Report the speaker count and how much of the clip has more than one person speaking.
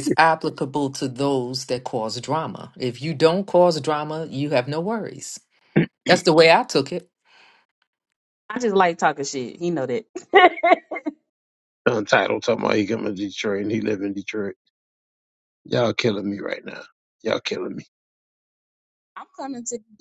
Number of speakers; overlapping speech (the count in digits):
3, no overlap